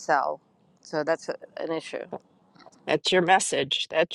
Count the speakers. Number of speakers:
two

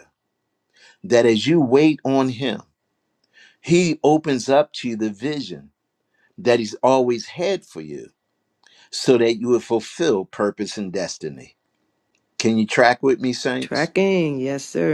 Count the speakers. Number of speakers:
two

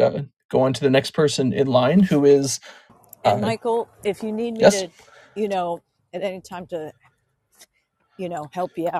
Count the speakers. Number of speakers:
two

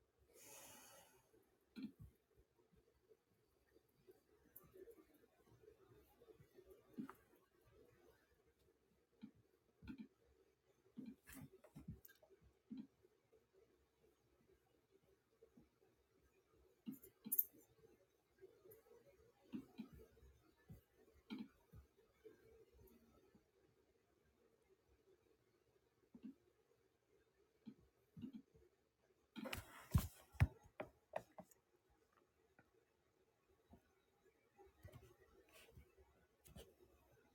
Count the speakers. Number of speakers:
zero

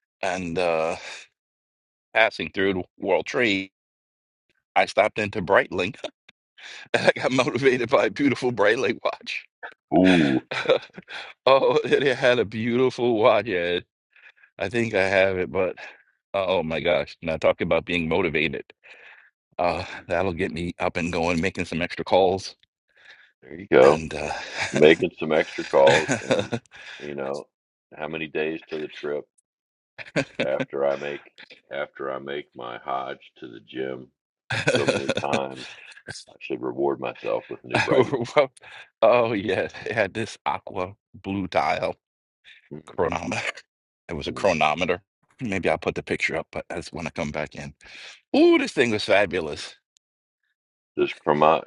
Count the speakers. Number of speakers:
two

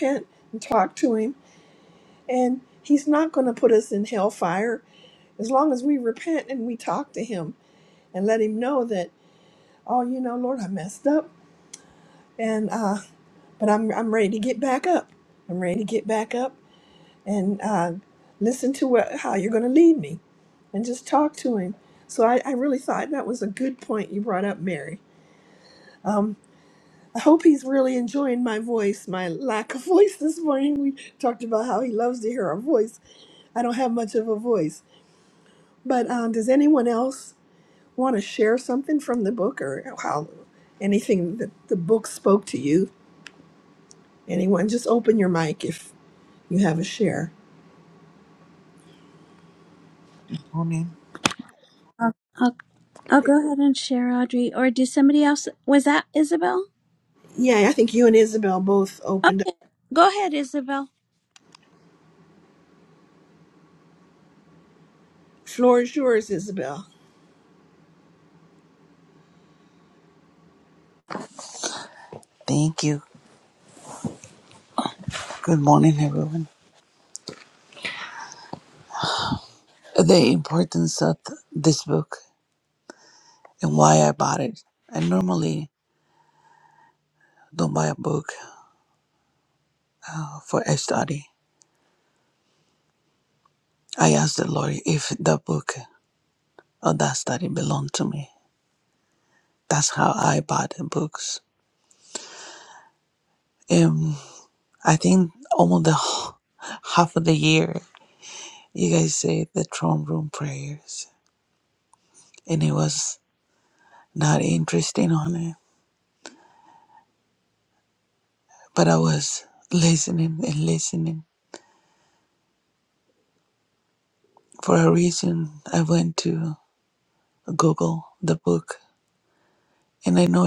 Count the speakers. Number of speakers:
three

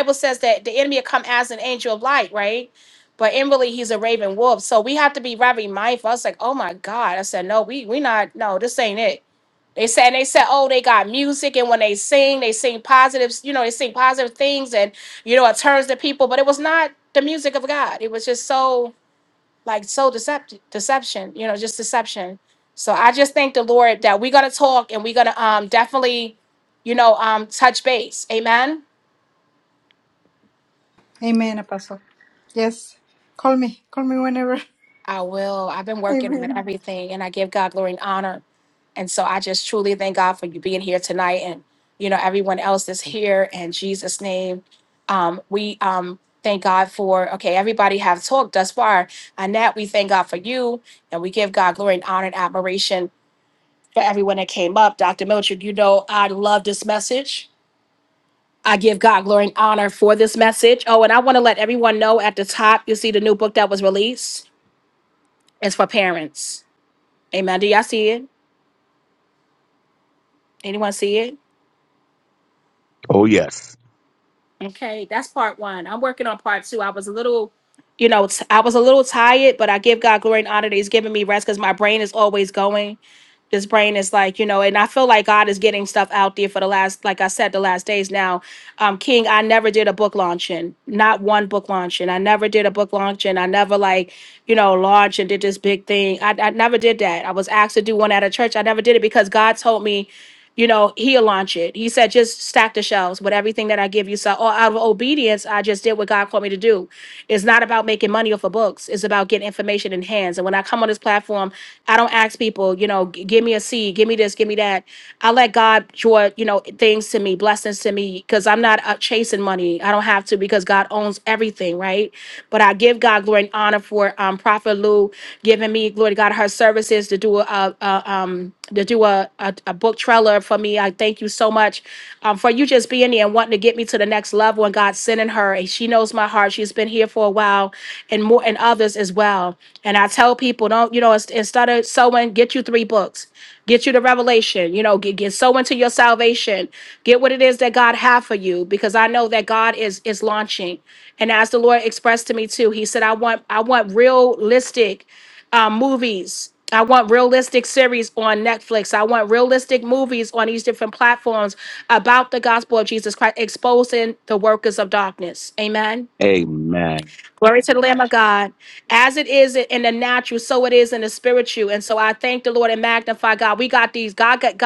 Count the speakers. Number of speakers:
three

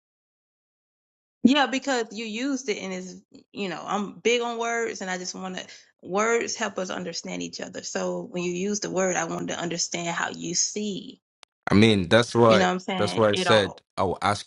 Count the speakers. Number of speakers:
two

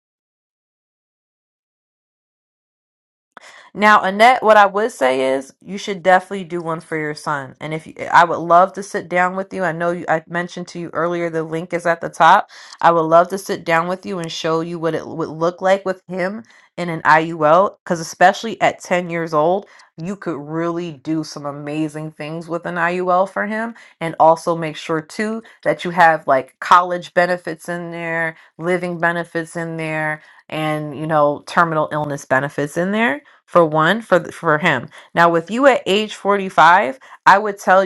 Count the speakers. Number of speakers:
one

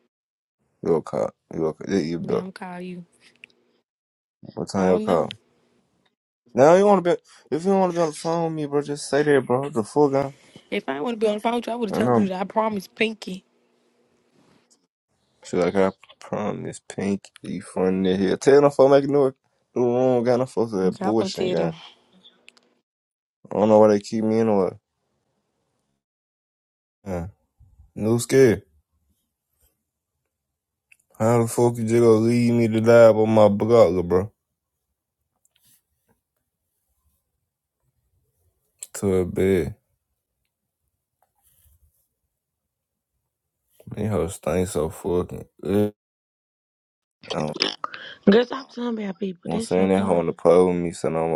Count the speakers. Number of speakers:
three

